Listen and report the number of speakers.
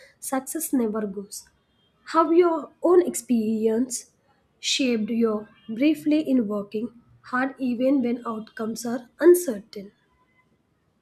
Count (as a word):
one